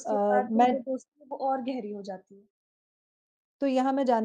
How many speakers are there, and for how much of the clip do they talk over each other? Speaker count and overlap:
2, about 19%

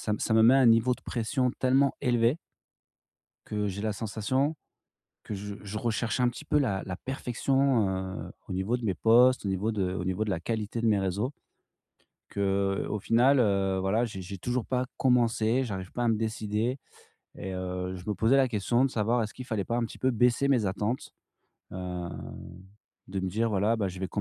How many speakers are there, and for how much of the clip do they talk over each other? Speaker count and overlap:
1, no overlap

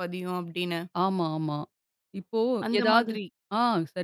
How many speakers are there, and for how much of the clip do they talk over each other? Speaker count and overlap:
2, about 13%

